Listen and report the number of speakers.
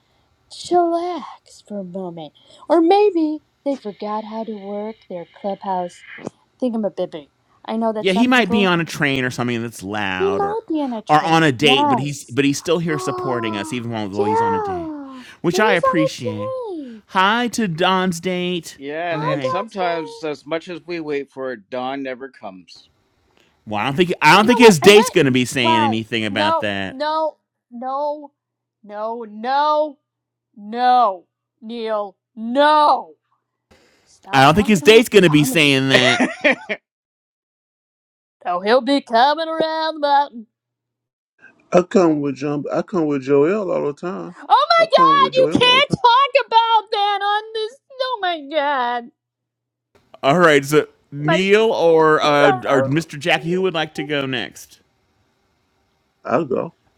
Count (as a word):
four